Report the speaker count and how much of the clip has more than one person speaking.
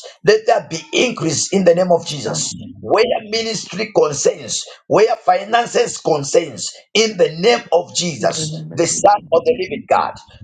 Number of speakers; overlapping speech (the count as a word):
one, no overlap